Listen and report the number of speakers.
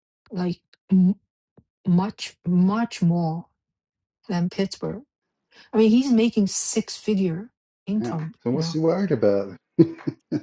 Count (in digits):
2